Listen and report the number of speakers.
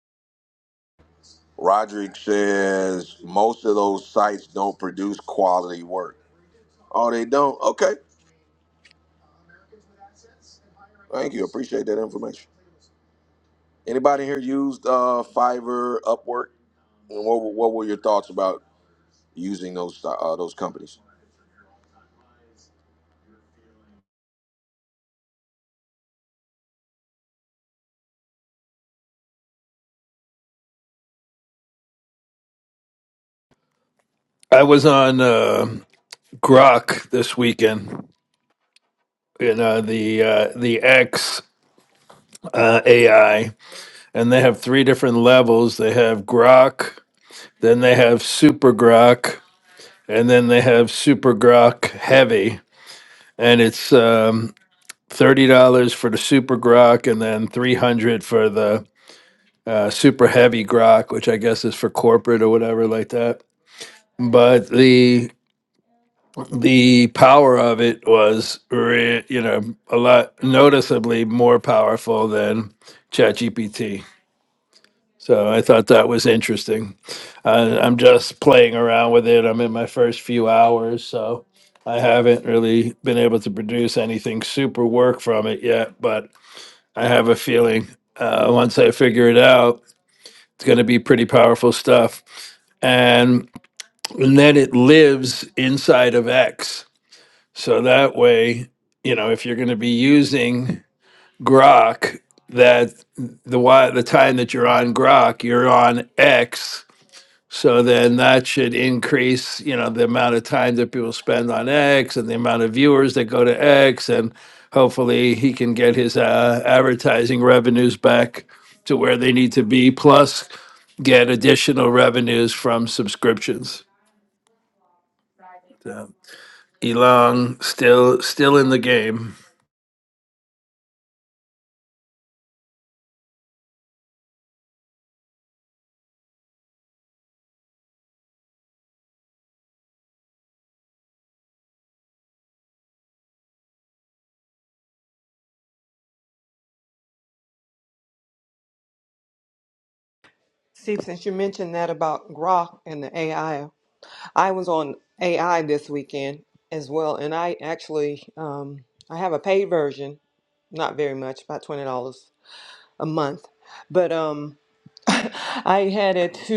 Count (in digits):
3